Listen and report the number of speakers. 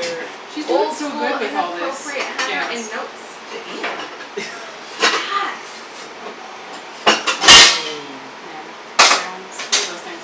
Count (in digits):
3